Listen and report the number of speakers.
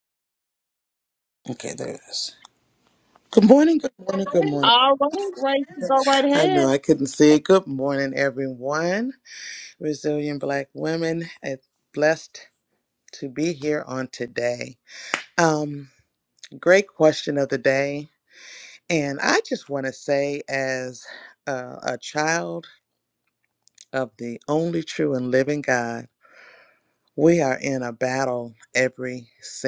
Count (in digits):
2